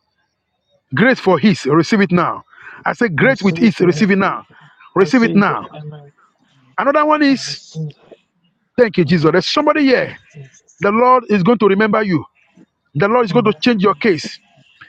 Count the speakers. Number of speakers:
two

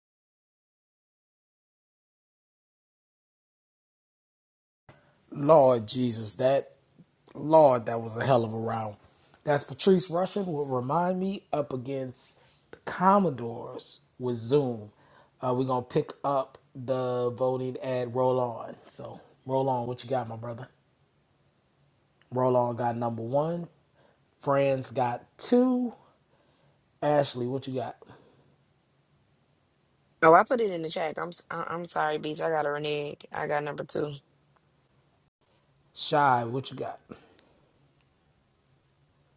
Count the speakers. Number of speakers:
two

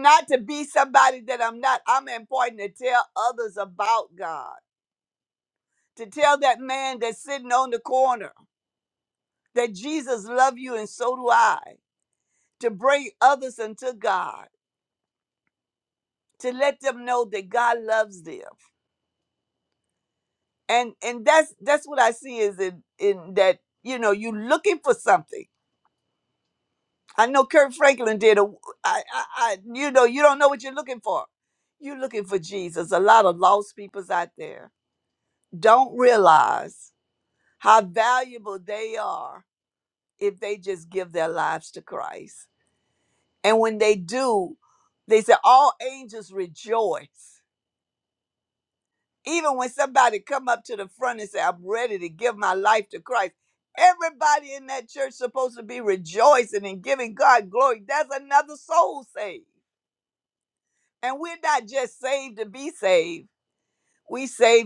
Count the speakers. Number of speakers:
one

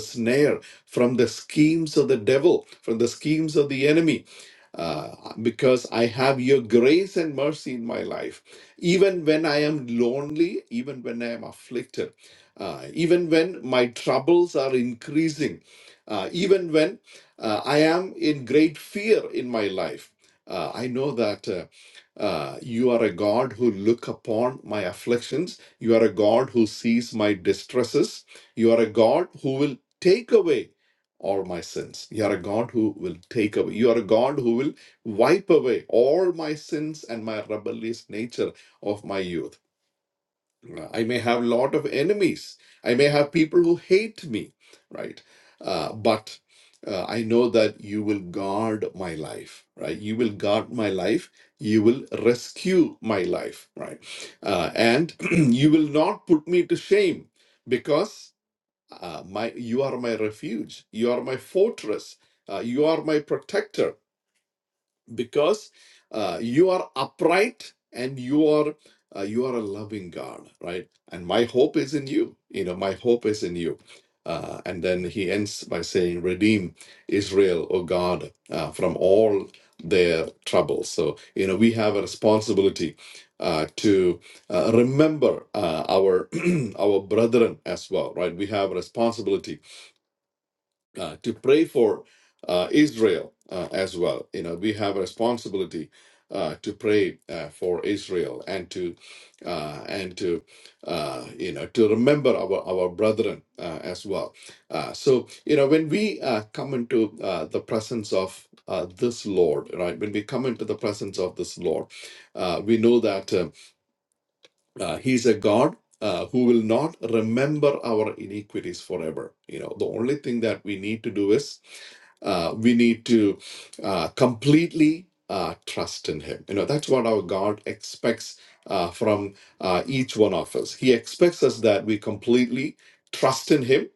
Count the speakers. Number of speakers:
one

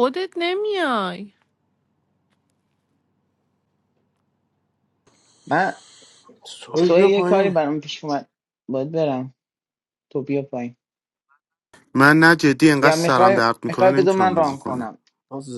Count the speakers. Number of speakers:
four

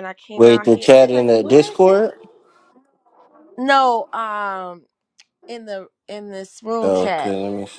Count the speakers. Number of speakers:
two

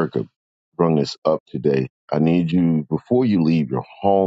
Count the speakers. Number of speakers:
one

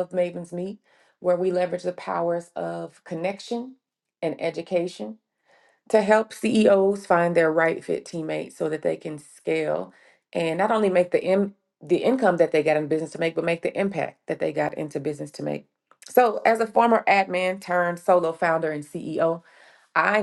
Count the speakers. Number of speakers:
one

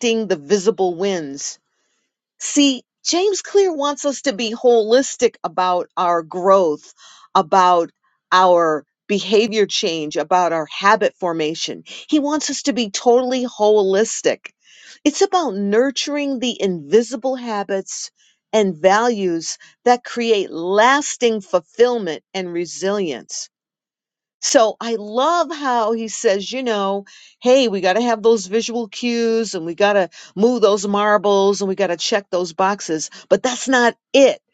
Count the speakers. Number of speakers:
one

